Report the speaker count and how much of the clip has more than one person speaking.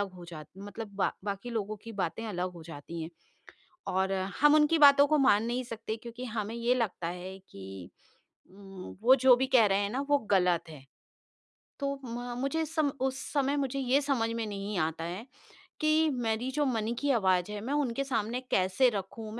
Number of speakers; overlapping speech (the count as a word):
one, no overlap